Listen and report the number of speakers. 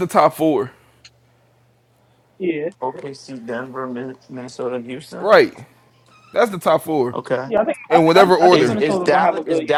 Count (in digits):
3